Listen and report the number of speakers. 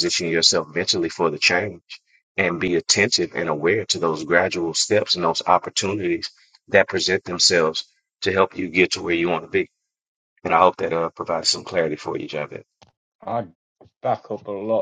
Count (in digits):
2